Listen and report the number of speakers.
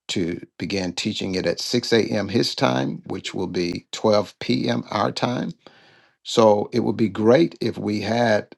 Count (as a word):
one